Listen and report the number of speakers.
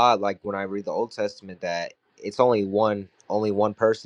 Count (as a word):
one